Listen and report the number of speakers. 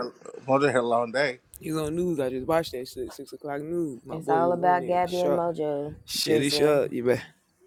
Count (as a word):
three